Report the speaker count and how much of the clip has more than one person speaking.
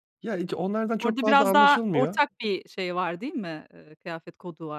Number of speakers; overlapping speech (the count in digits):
2, about 24%